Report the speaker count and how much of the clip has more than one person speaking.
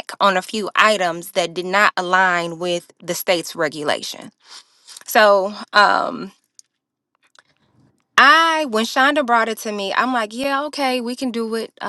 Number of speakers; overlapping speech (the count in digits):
1, no overlap